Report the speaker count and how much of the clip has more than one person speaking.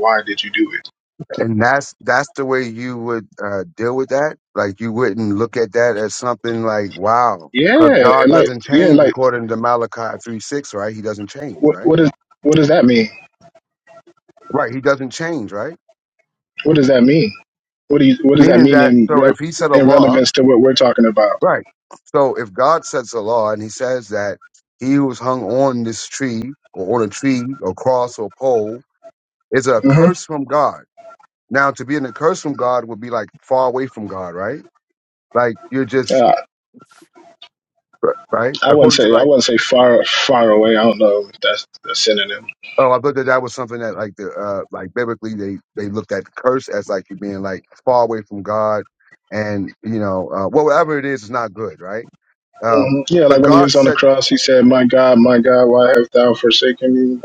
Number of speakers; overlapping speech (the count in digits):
2, about 9%